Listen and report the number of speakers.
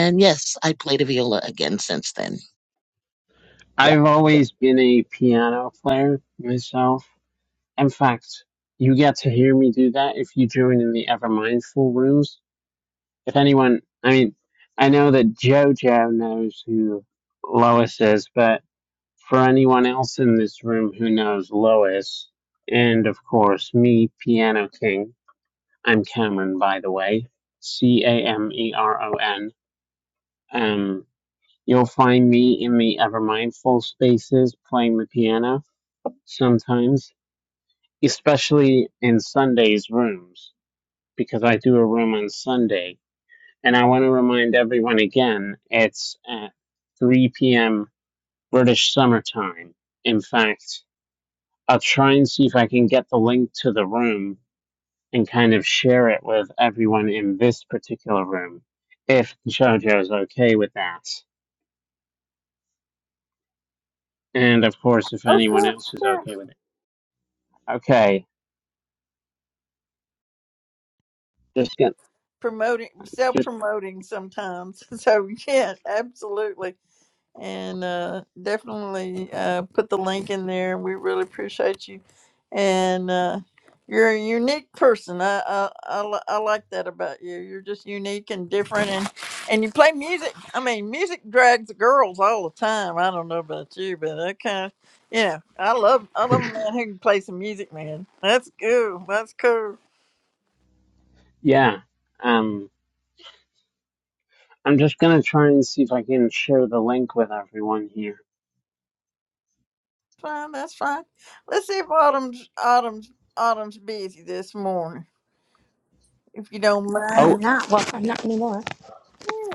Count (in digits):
4